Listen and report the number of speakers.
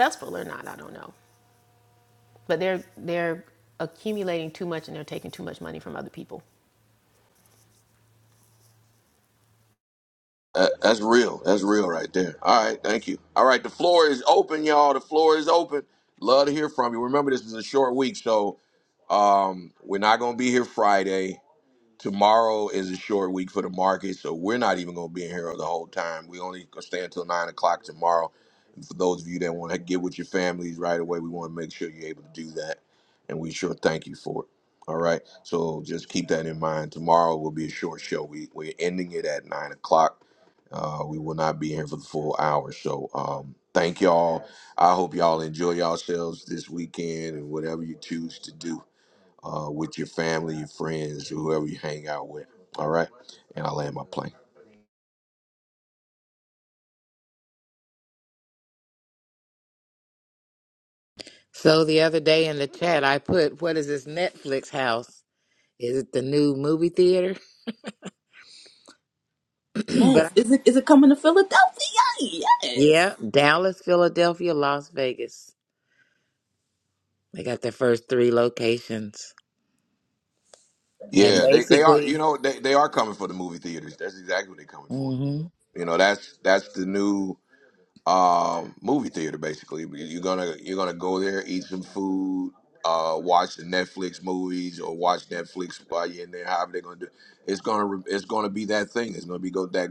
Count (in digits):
4